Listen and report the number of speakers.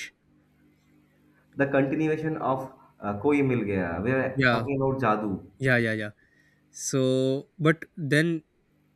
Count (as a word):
two